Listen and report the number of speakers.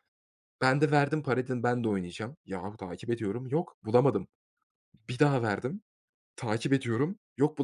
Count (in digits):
1